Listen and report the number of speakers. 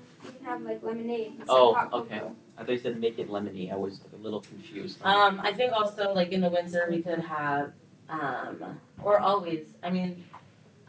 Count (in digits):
3